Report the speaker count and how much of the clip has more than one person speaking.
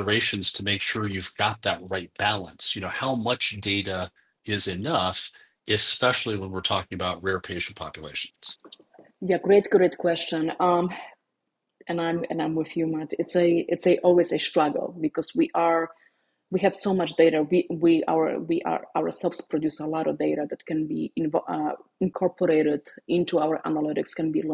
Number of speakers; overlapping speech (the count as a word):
two, no overlap